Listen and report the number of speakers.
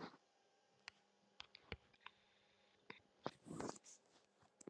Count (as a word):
zero